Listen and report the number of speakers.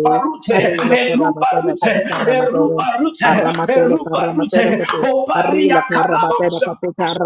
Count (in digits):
2